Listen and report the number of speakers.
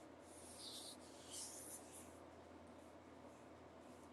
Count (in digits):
0